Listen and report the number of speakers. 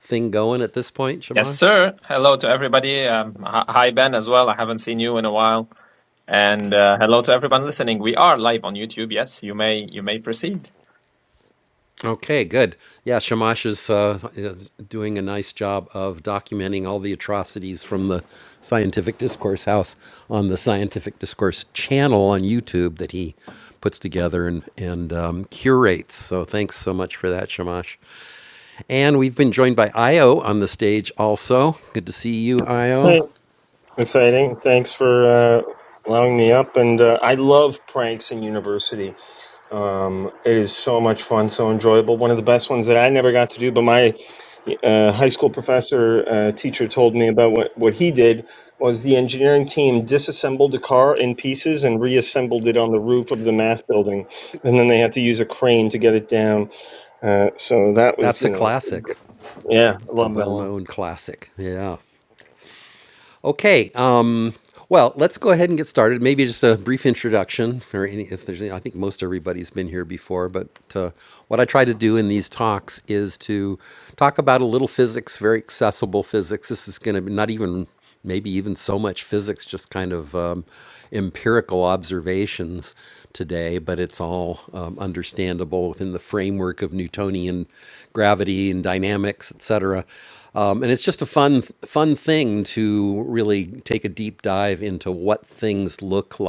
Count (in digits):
3